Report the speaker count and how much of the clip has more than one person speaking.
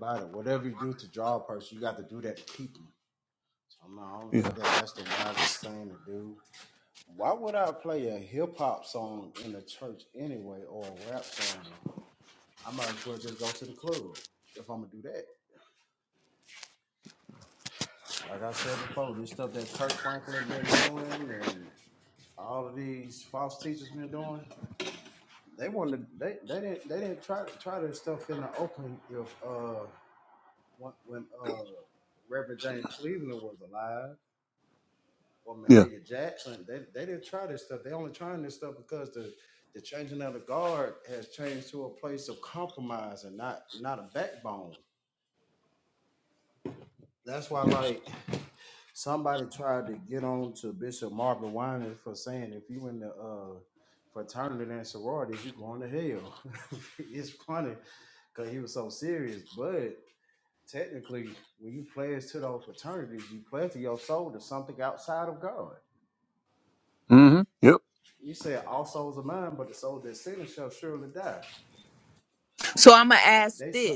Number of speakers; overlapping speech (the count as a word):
three, about 2%